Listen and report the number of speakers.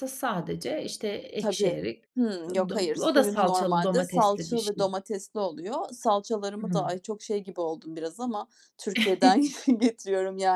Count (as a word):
two